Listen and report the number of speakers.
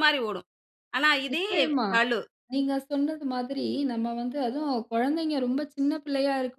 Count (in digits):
2